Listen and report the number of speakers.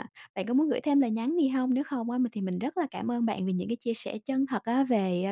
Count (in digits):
1